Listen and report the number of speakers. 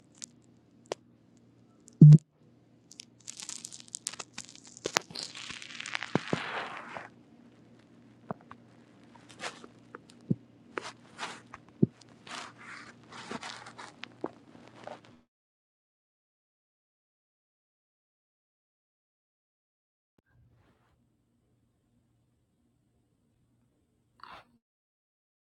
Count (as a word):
zero